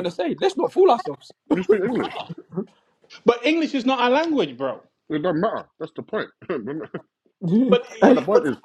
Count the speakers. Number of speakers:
three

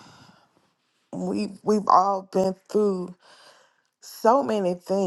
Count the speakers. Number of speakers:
one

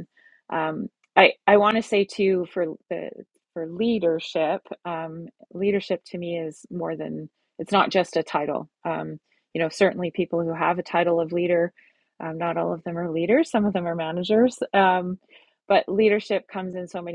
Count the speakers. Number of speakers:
one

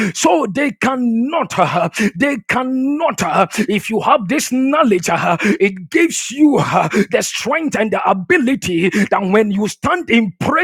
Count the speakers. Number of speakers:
one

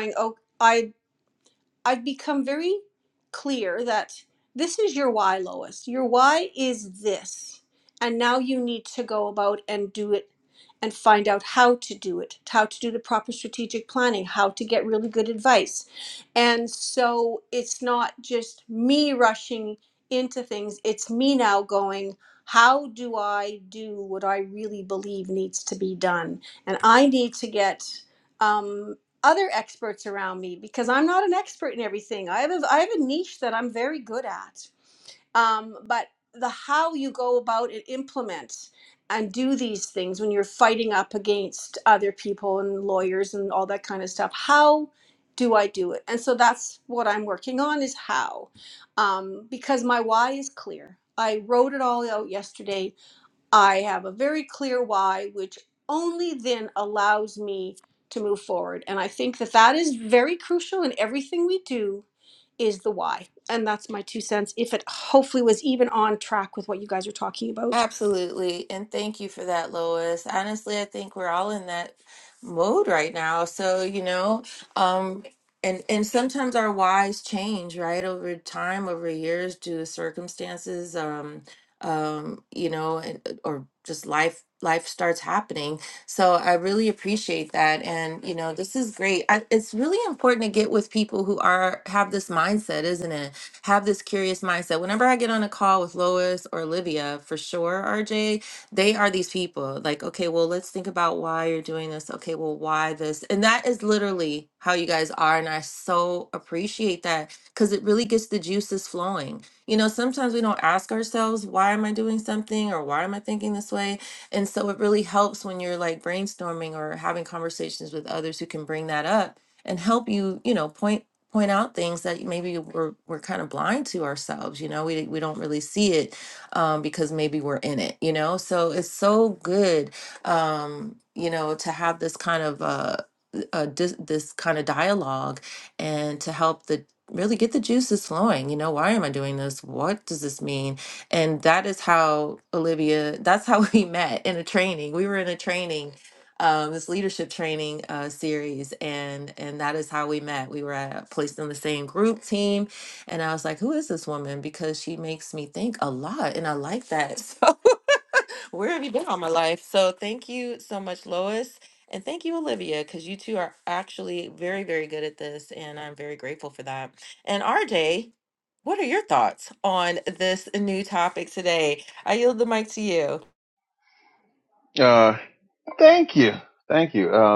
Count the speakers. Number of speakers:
three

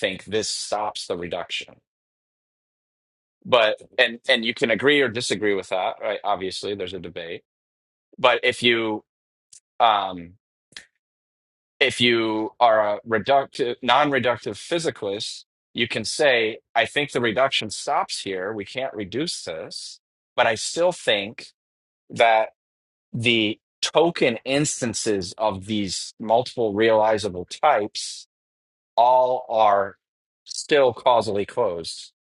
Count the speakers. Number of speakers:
one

